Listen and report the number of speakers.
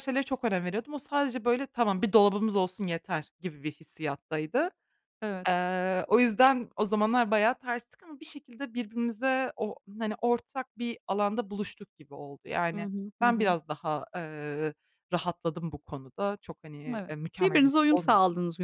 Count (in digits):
2